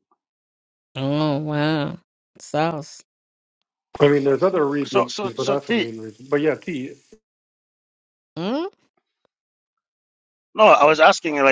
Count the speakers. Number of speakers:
three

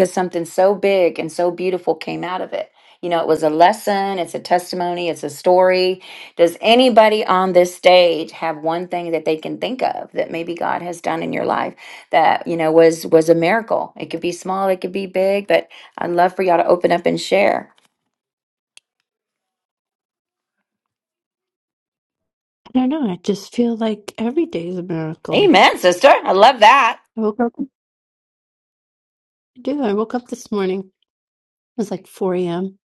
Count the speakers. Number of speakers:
two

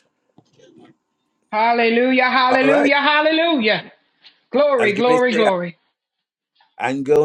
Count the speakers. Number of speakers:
two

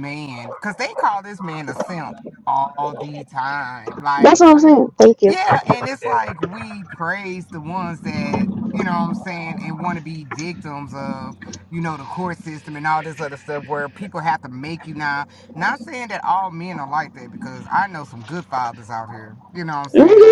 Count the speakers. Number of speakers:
two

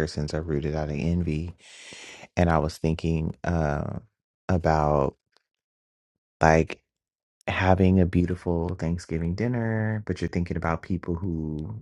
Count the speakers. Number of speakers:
one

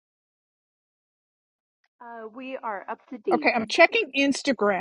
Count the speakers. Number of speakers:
two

